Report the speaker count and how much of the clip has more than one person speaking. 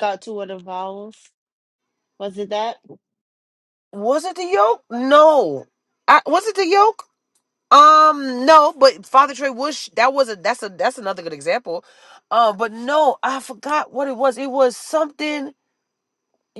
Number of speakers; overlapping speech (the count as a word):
two, no overlap